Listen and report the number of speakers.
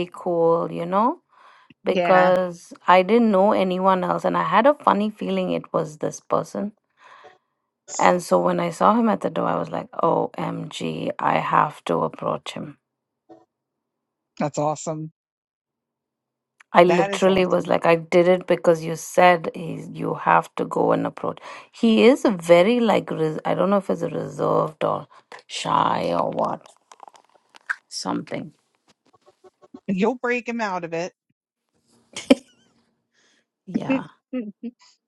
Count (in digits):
2